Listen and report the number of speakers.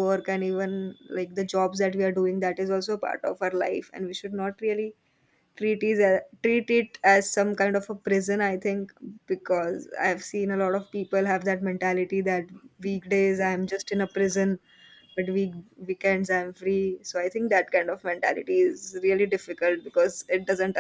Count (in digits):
1